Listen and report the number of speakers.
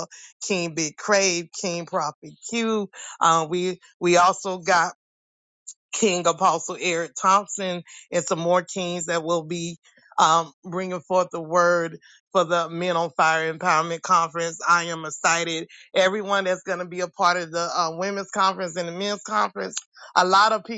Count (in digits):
1